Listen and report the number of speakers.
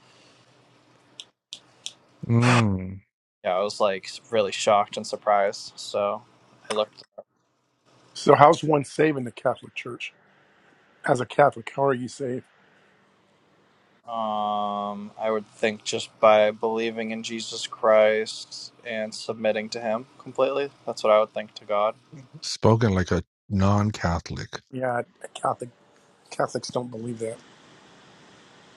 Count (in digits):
3